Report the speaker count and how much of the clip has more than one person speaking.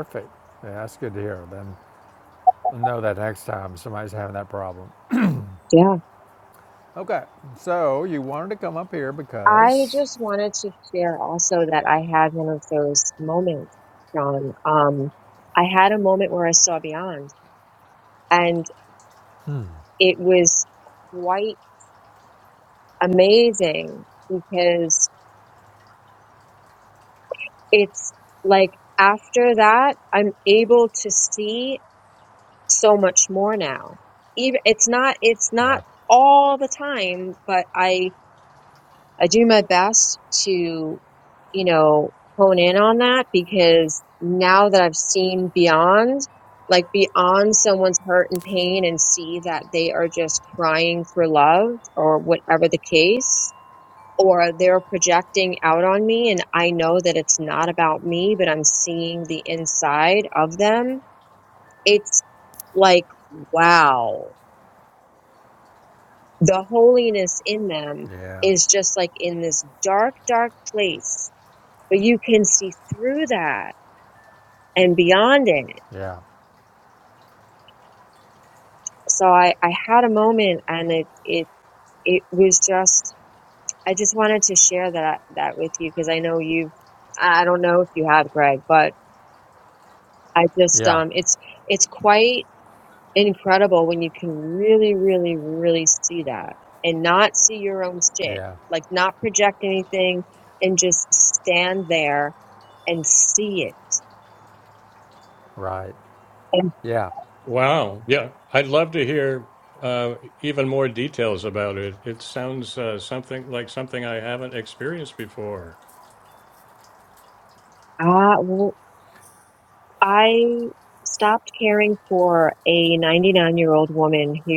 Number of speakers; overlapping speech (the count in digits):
3, about 1%